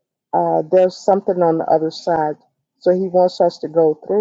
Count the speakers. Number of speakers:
one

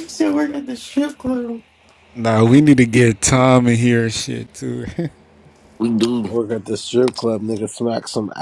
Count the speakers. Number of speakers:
three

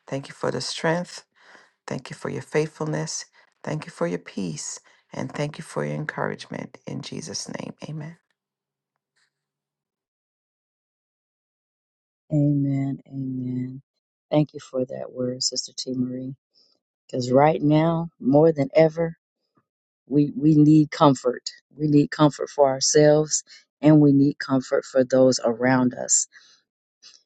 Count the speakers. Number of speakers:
two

